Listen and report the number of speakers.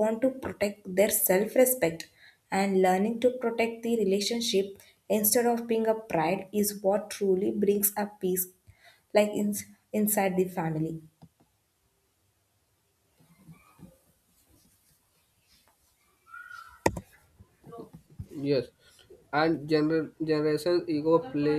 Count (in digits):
2